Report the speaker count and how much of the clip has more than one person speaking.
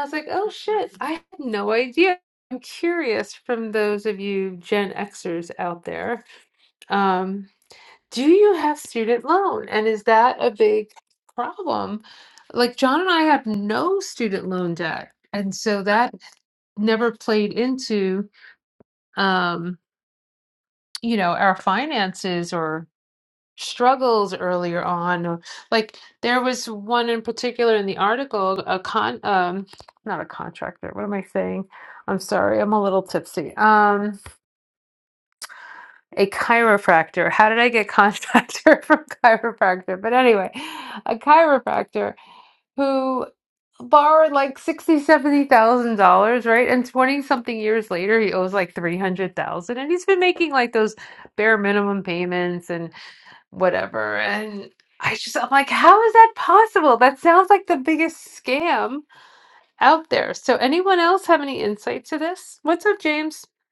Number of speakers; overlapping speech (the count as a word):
one, no overlap